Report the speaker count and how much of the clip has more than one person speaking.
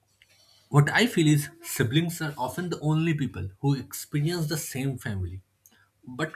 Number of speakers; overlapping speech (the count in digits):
1, no overlap